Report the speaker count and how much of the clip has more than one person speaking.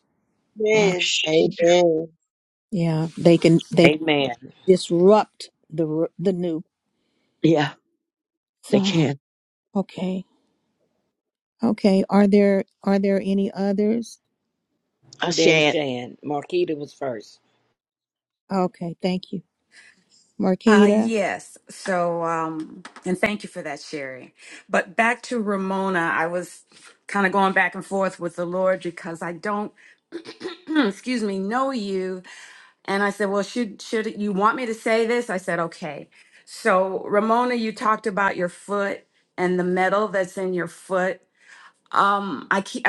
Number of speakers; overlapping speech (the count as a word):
five, about 4%